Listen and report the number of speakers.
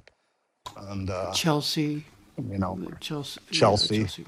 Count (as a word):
two